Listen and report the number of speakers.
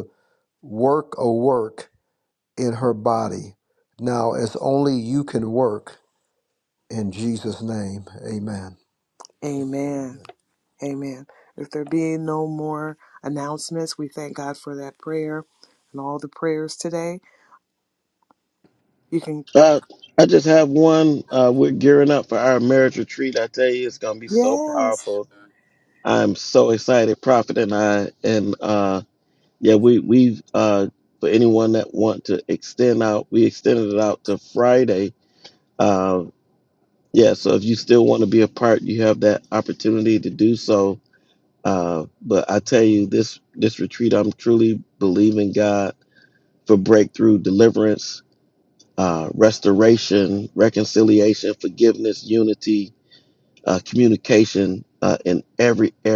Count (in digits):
3